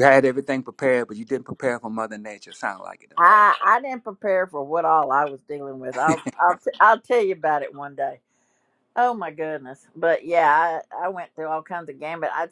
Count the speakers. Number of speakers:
two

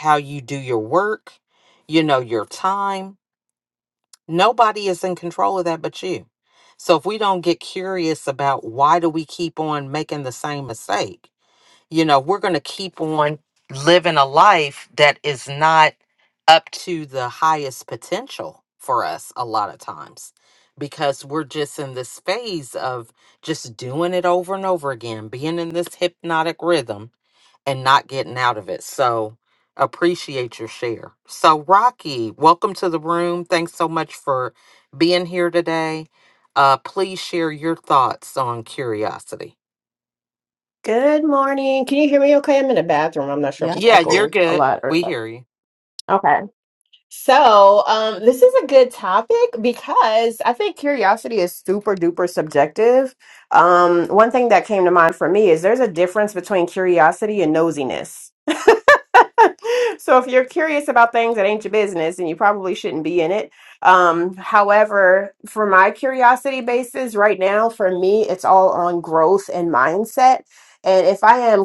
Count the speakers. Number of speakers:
two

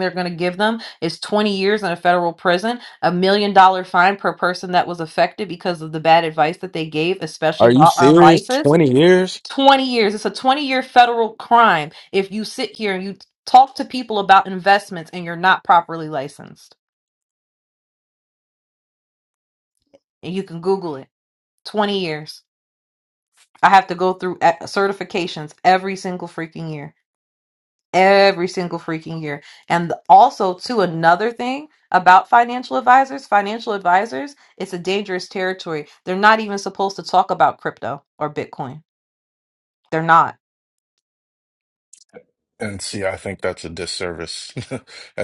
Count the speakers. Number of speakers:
three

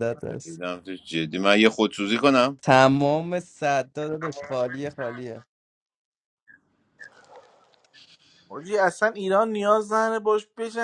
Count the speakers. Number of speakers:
three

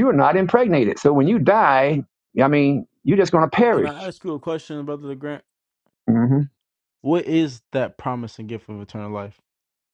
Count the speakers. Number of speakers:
two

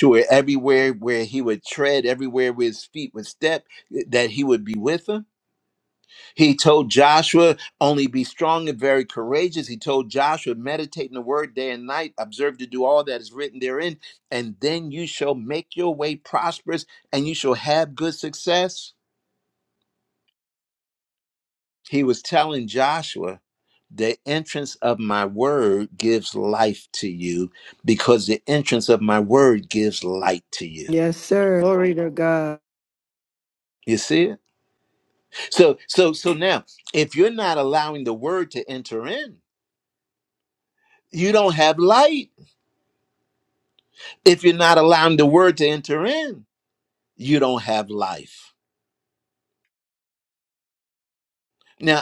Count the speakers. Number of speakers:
two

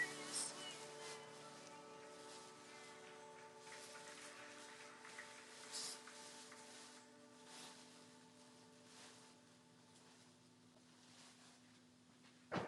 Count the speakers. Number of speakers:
zero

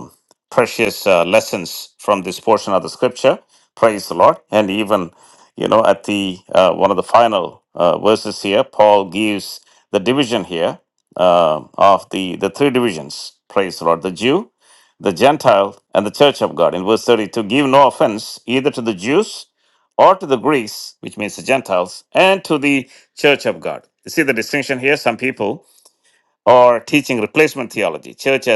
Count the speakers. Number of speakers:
one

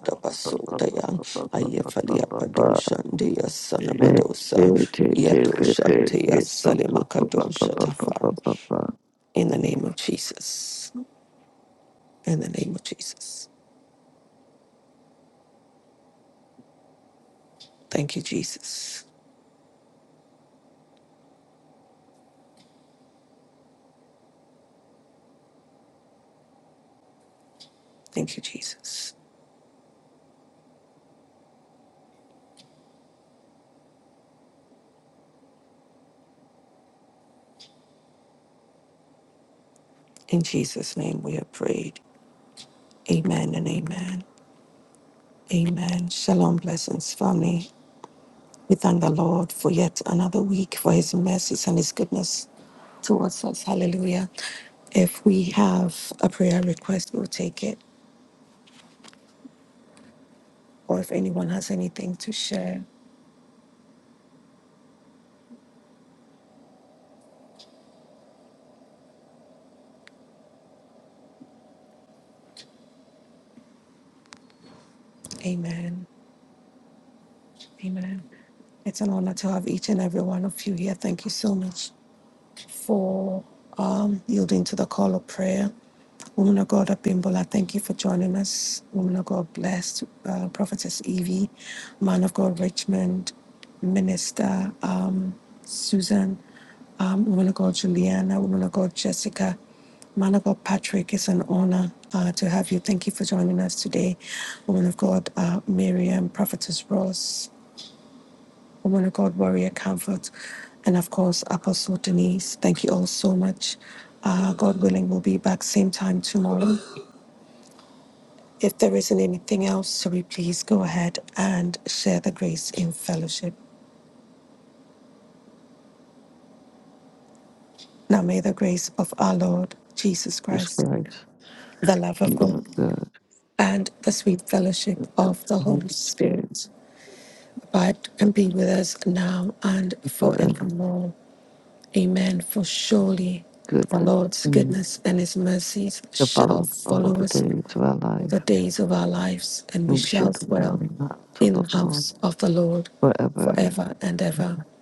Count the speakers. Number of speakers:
two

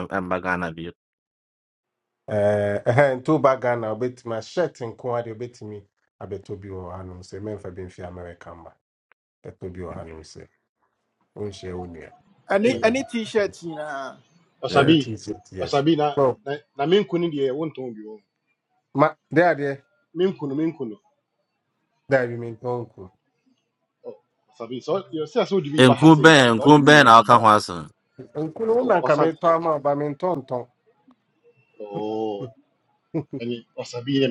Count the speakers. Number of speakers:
four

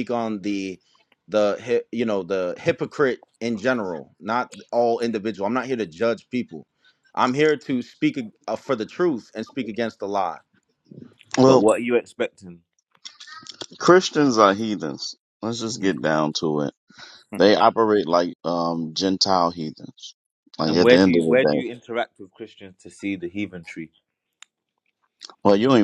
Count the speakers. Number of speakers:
three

